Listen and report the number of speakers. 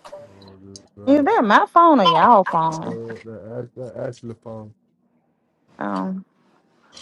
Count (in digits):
2